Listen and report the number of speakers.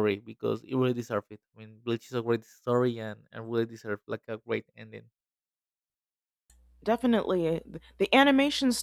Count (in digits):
2